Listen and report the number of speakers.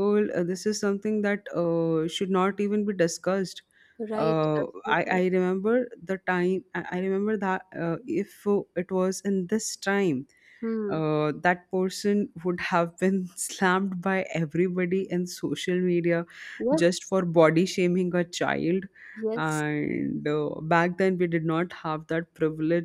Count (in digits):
2